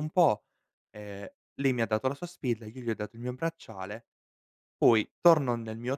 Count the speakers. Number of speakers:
1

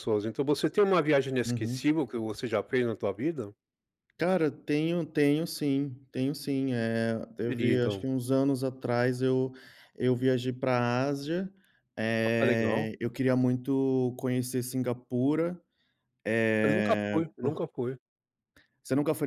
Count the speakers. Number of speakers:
2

